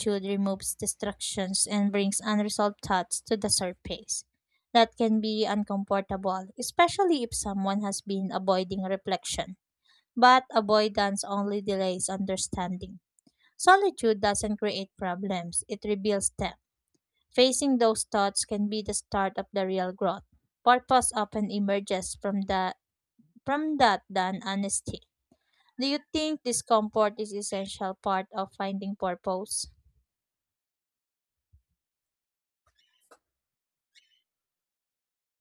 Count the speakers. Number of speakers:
1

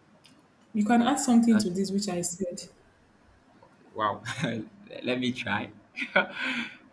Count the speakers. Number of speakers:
2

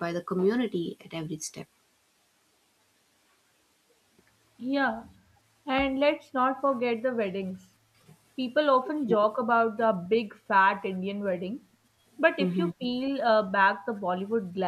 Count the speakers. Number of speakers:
2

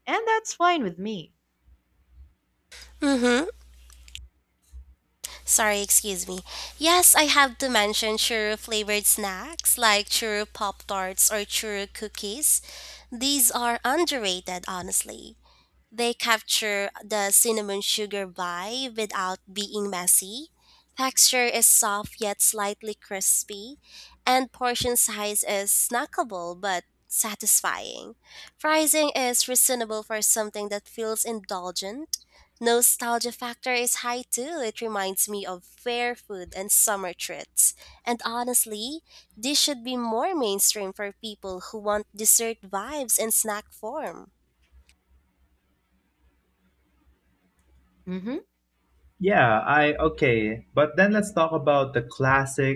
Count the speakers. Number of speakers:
3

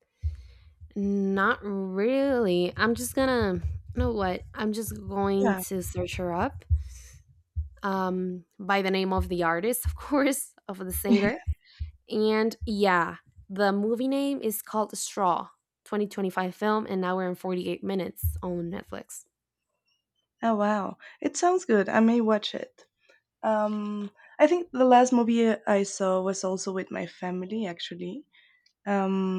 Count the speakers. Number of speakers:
2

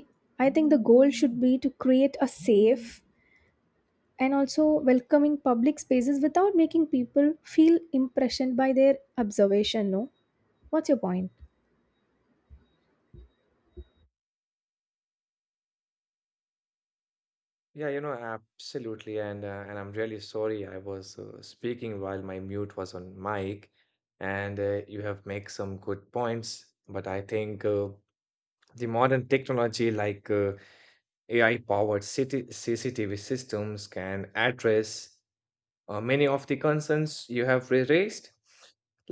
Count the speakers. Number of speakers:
2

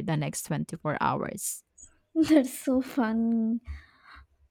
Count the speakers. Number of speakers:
2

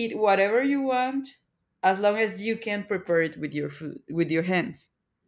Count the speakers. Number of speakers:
1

